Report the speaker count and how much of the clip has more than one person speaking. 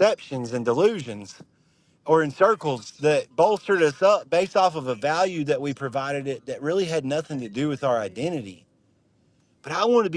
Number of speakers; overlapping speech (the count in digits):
1, no overlap